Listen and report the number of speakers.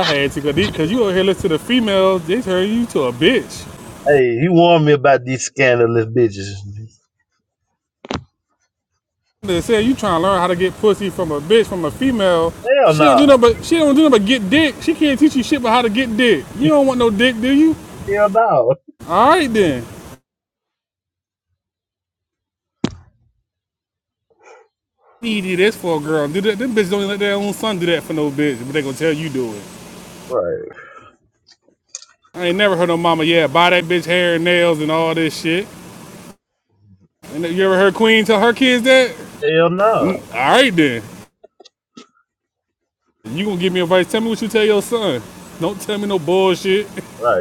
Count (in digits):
2